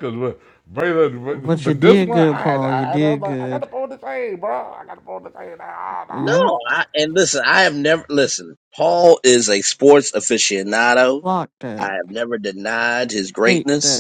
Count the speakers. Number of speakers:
3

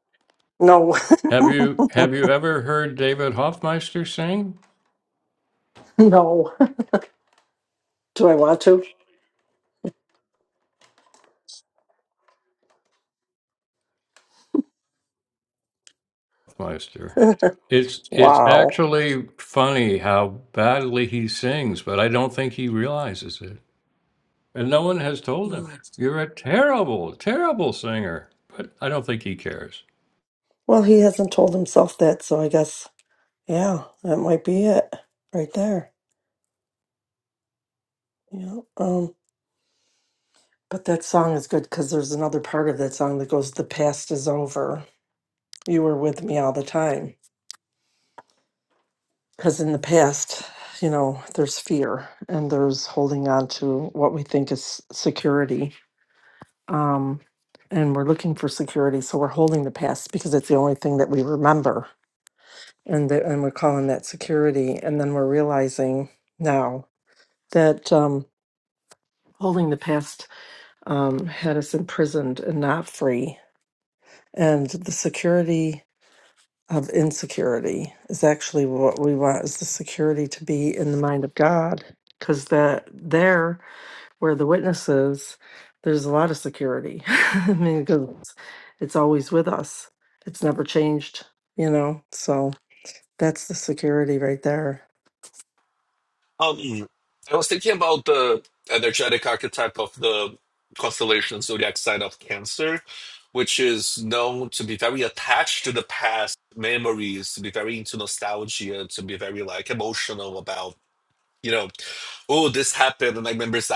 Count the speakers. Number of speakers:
3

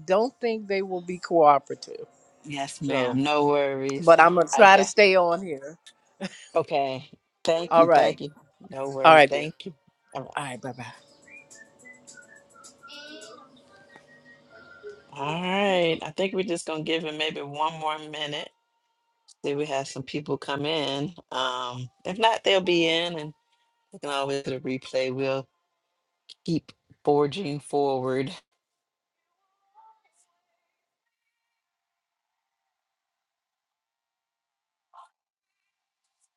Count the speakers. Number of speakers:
2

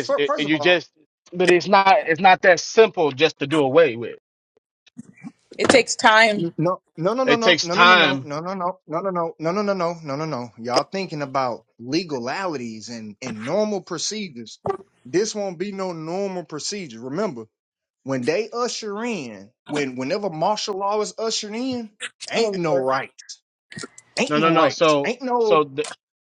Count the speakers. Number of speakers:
3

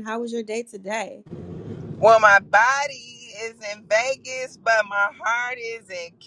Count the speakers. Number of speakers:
2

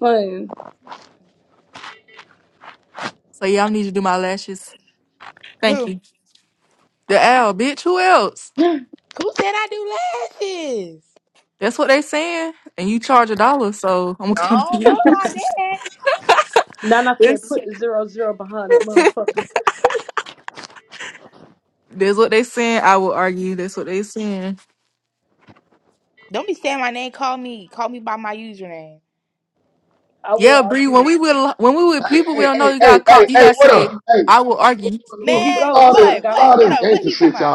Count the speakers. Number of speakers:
4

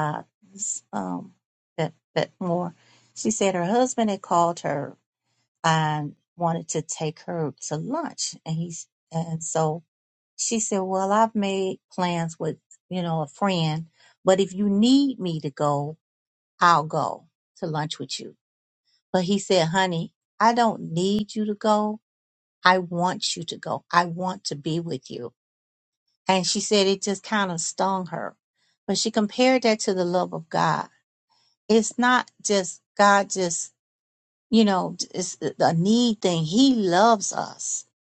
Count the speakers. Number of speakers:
1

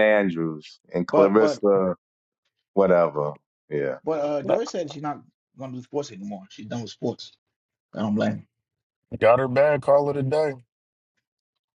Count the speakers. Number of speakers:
3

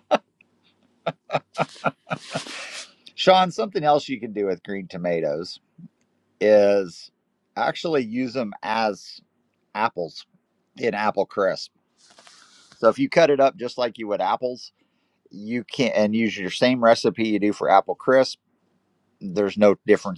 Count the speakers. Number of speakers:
1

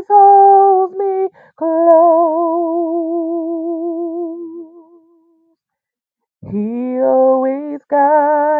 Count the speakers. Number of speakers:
1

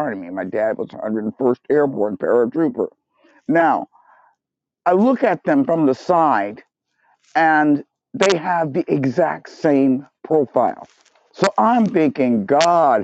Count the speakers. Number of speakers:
1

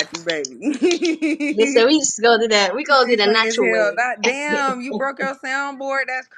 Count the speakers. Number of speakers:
2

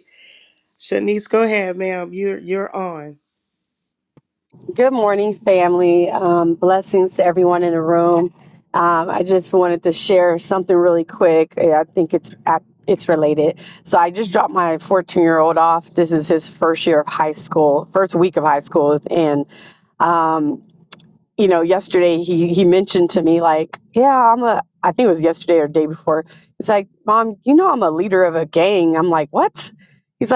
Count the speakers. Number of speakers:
2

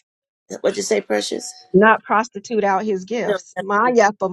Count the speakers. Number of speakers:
2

